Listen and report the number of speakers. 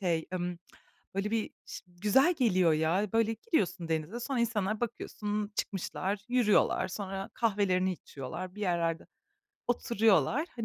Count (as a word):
one